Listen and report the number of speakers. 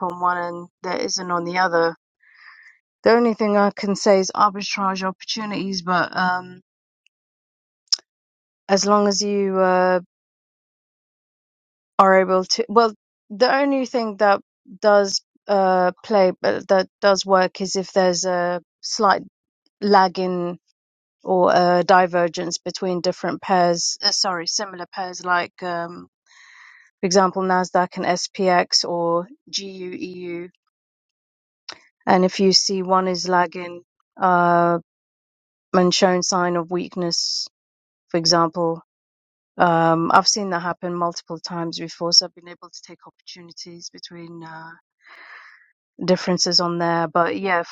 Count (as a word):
one